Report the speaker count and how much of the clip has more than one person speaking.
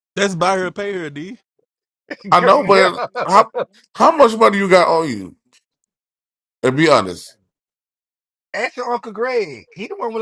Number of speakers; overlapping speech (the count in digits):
3, about 6%